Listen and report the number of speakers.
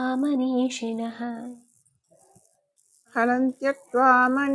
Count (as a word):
two